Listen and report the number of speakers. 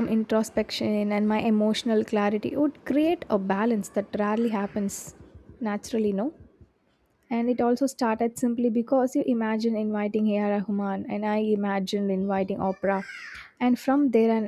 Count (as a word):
one